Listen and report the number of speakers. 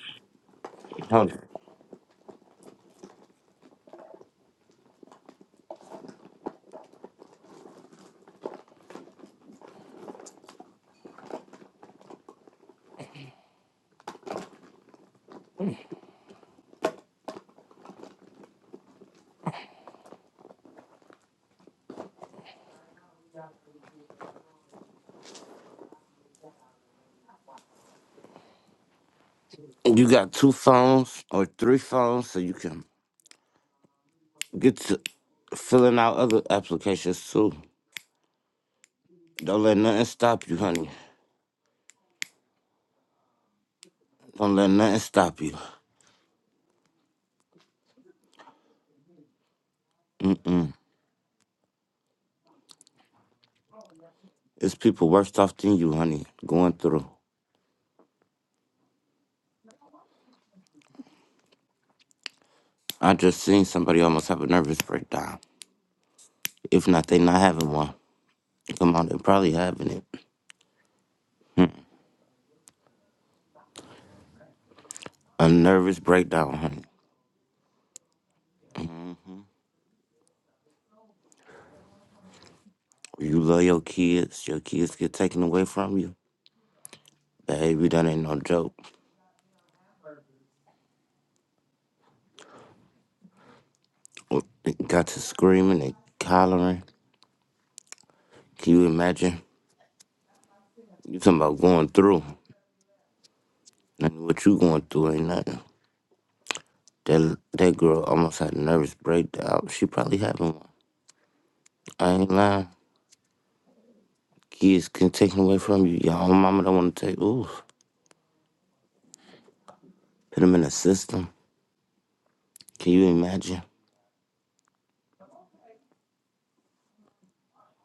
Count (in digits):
1